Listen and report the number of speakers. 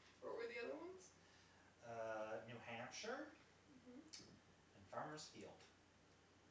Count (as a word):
two